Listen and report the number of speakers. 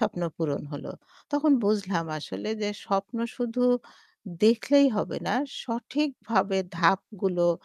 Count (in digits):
1